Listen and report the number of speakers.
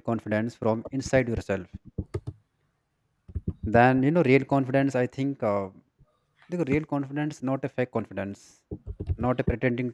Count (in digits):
1